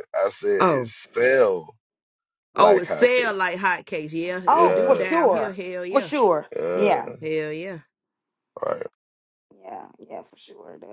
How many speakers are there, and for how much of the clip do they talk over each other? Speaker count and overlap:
3, about 26%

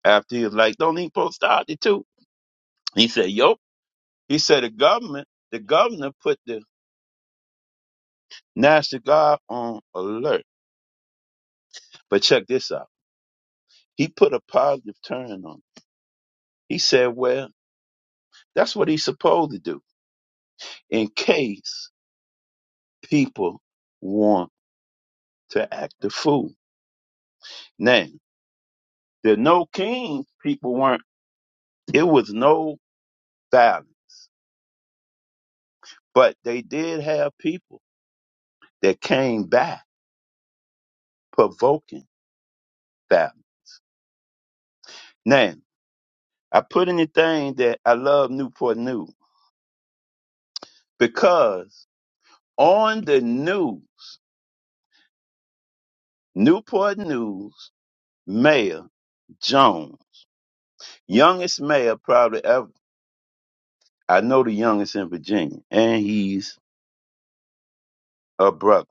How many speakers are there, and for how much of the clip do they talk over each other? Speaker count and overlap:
1, no overlap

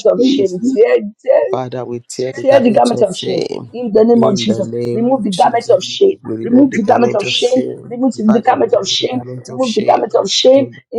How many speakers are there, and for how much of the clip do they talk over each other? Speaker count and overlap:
2, about 62%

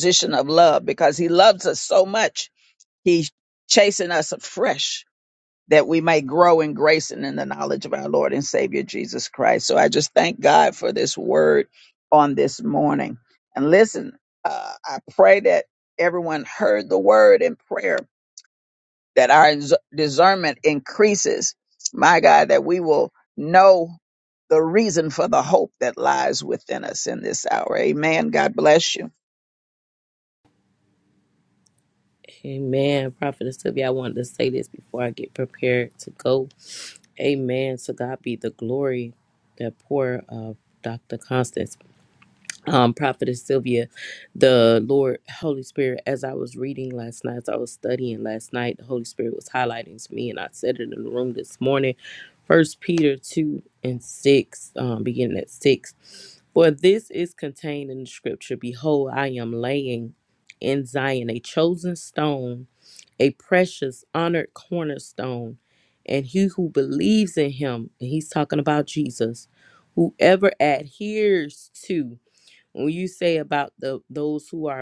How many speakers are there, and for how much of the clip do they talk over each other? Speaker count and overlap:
2, no overlap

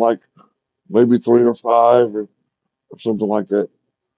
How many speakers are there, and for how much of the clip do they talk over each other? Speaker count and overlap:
1, no overlap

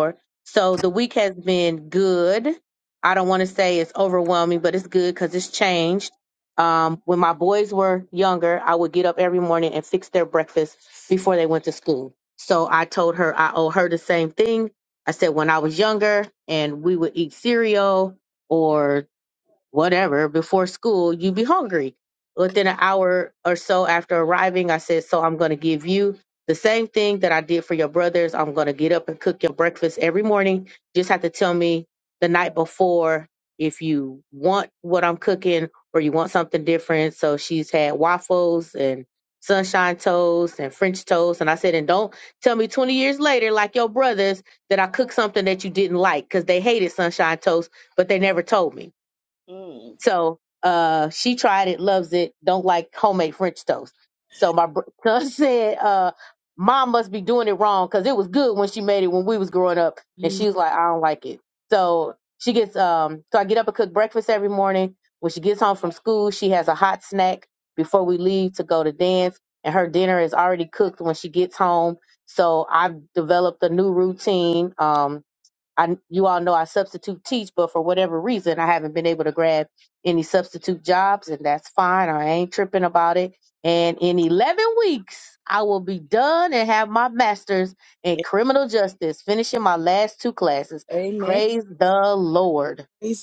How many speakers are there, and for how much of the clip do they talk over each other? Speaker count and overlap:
2, about 1%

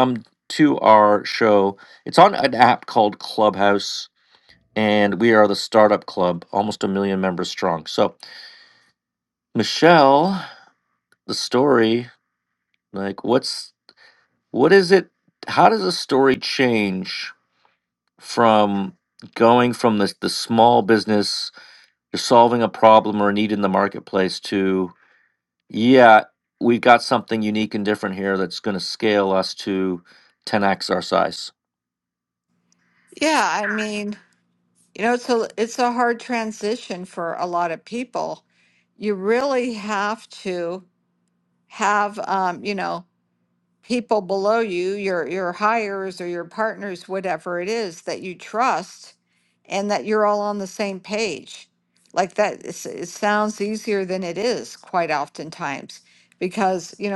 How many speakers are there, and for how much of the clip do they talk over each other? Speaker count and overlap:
2, no overlap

